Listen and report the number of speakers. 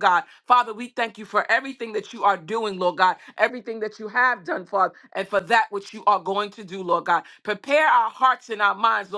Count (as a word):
one